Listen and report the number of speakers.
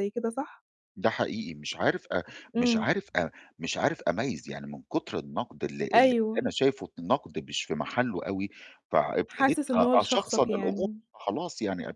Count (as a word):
two